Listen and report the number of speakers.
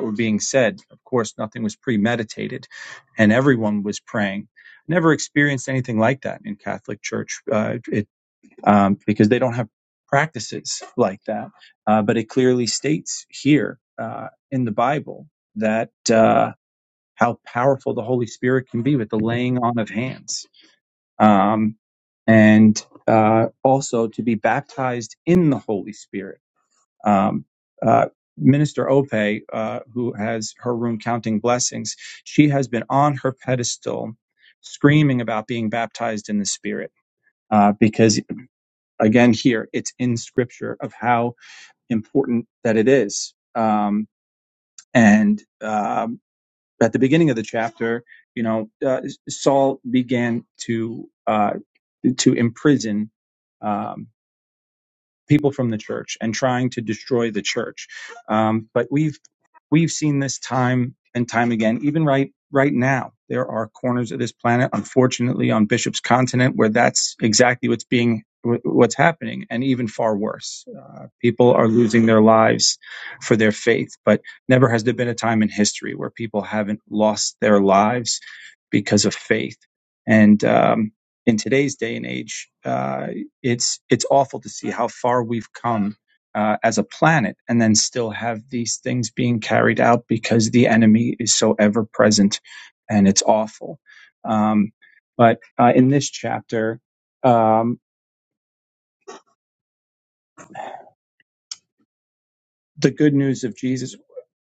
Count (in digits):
1